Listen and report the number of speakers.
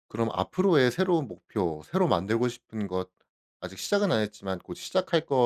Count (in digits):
1